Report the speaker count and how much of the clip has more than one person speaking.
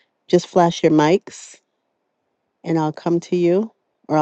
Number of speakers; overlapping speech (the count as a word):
one, no overlap